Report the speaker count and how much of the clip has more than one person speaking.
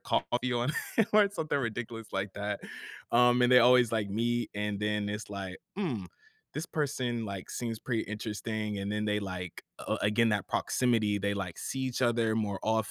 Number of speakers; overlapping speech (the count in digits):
1, no overlap